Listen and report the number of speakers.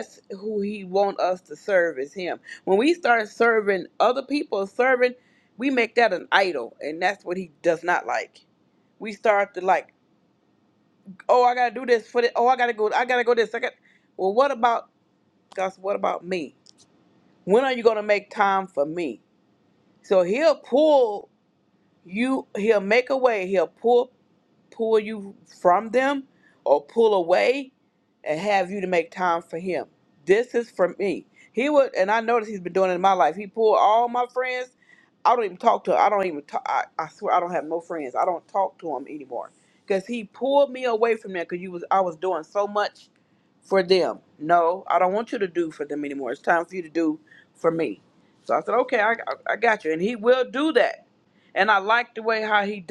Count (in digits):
1